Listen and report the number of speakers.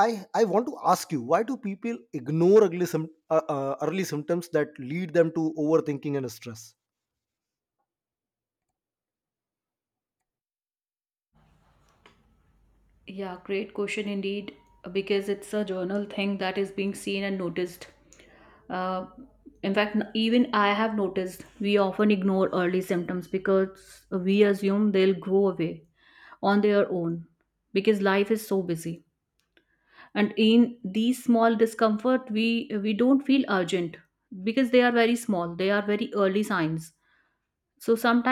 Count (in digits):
2